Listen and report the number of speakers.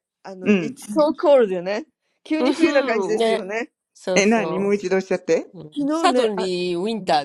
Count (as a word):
three